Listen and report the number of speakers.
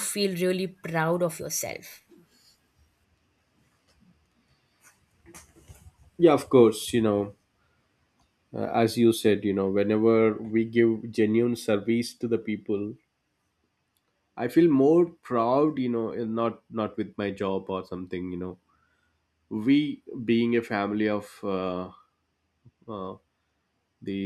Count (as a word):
two